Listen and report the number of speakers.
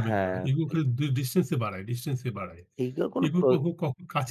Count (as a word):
two